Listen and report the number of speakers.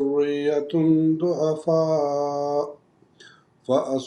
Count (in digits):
1